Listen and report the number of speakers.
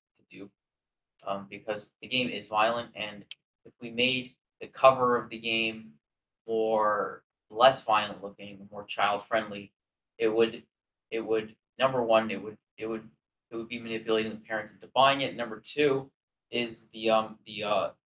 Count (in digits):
1